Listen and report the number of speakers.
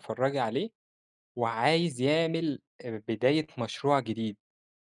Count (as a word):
one